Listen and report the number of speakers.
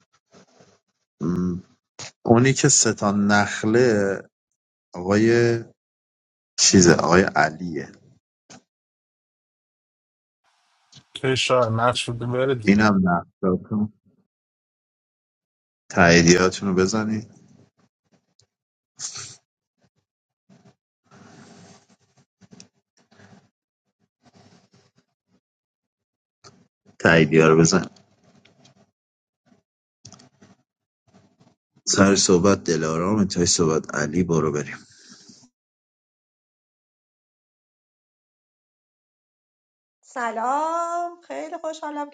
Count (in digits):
3